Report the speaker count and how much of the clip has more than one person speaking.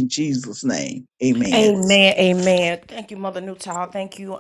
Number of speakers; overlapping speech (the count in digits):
2, about 5%